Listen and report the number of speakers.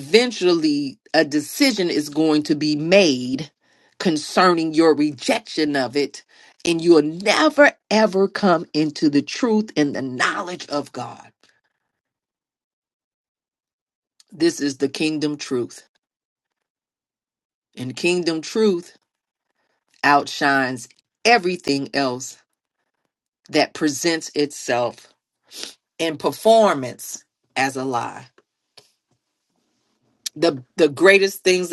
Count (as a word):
one